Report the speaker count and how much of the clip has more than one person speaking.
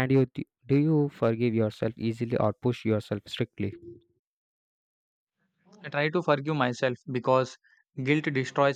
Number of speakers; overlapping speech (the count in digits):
2, no overlap